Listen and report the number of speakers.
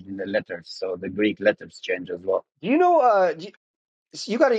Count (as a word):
two